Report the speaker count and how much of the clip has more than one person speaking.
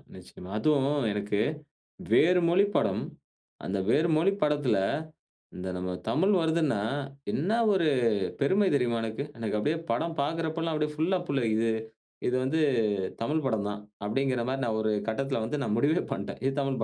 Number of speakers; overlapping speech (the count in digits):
1, no overlap